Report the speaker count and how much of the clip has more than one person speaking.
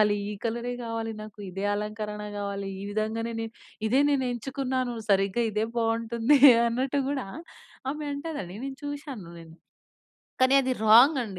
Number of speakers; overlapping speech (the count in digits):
1, no overlap